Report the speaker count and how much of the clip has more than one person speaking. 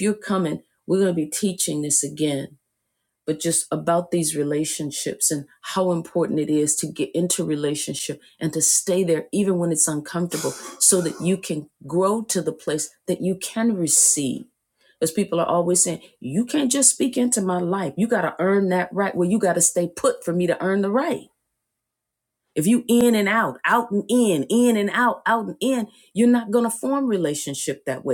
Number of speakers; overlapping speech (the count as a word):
one, no overlap